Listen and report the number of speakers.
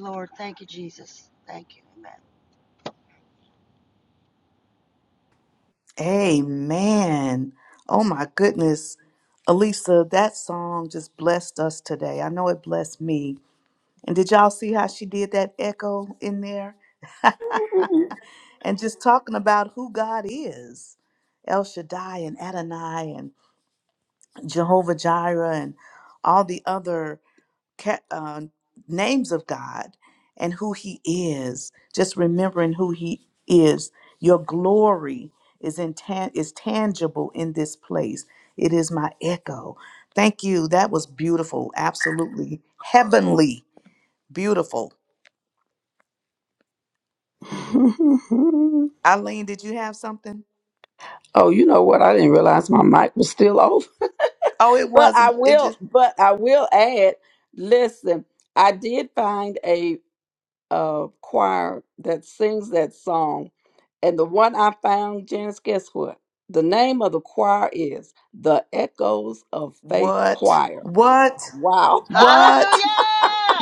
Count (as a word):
three